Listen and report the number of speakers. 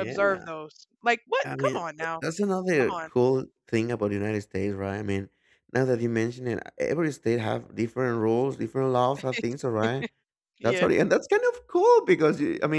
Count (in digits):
2